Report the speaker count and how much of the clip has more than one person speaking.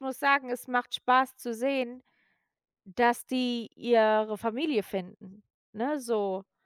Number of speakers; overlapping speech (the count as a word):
one, no overlap